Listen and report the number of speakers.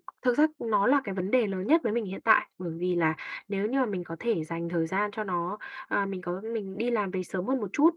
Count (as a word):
one